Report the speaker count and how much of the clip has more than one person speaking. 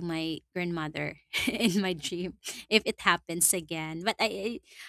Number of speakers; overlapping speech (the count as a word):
one, no overlap